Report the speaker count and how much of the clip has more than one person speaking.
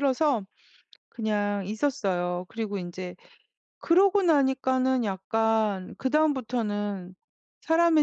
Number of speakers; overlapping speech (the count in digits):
1, no overlap